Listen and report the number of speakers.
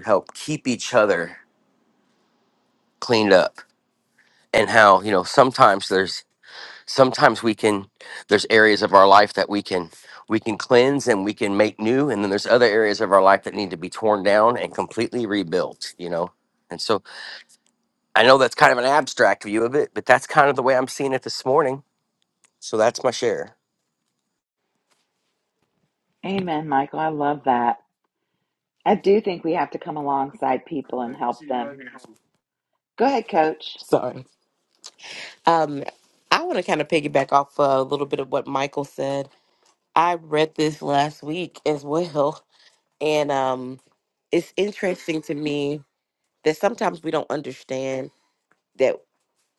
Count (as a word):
three